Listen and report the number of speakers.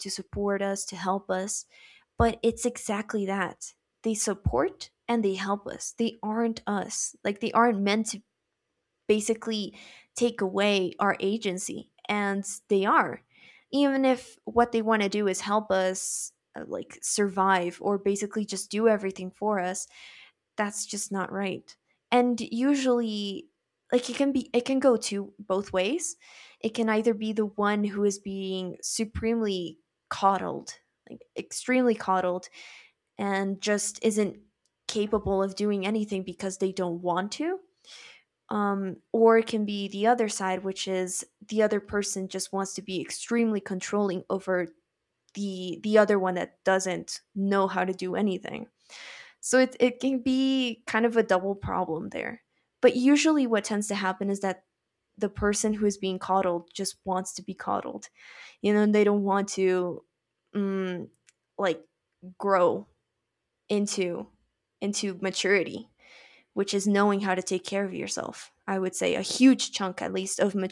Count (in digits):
1